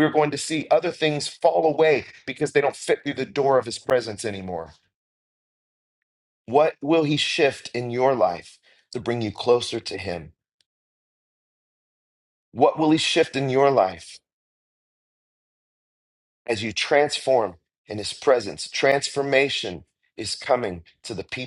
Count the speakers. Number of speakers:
1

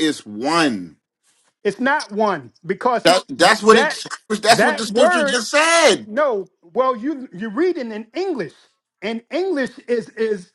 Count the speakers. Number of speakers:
2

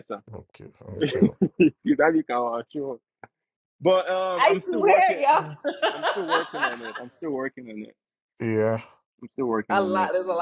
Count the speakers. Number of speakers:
3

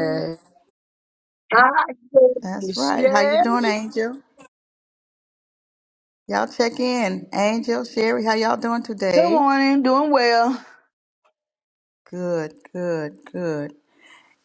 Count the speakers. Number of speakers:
3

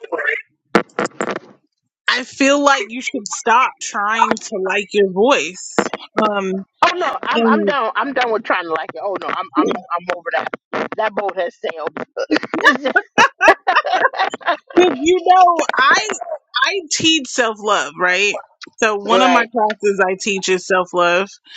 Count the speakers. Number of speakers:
2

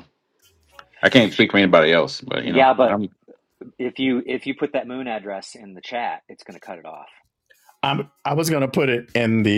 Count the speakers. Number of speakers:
3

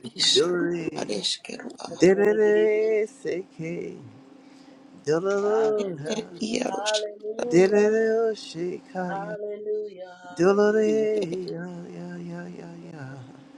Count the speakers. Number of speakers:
3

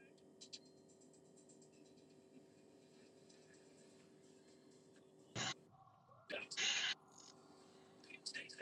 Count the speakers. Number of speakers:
0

